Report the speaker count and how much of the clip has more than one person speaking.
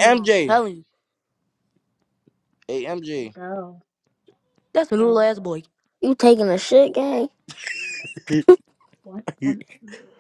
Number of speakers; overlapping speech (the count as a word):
four, about 15%